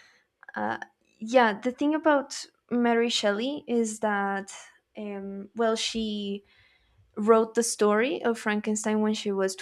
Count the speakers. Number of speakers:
one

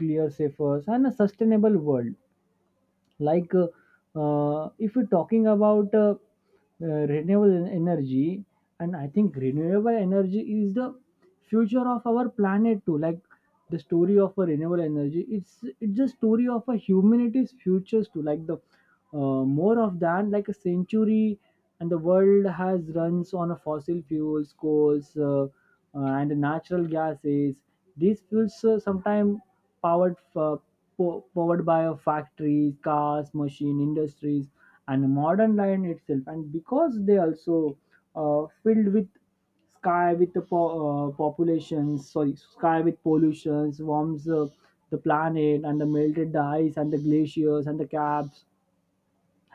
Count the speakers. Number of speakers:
one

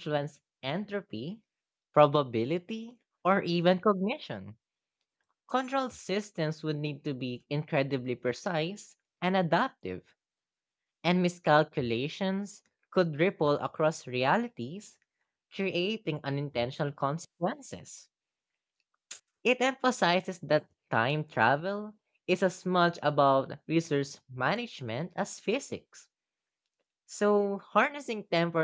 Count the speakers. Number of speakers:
one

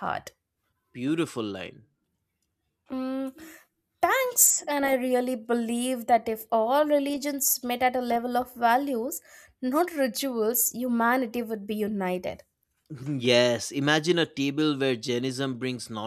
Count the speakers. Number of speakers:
two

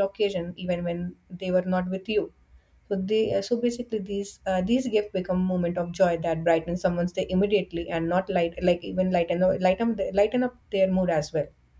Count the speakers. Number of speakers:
one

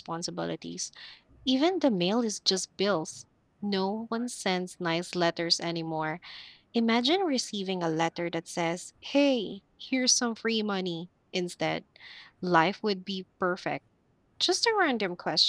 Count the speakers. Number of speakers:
one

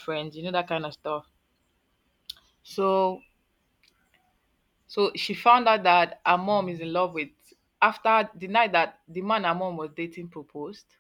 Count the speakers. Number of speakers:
one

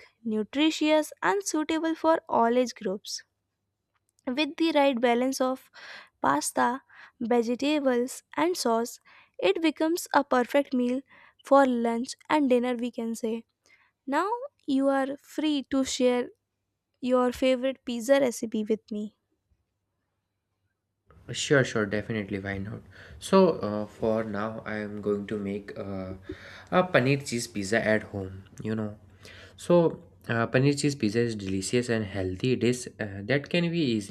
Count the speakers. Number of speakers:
two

